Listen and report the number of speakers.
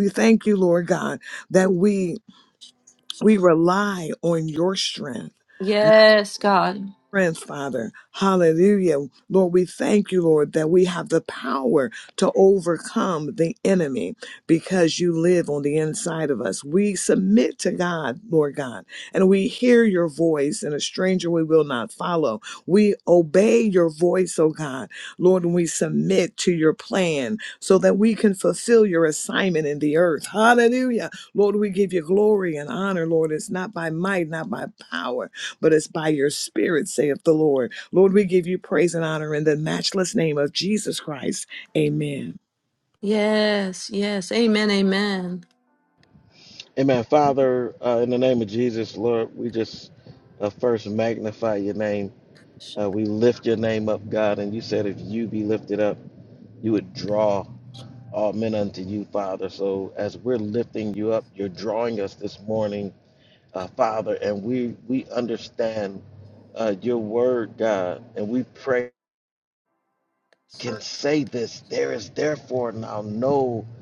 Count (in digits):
3